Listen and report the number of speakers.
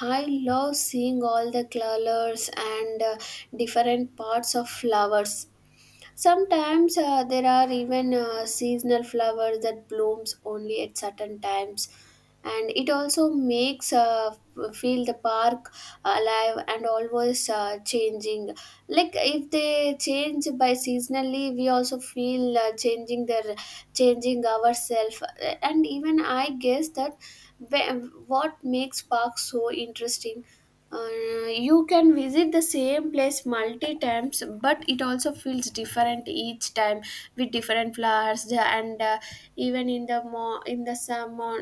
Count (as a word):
one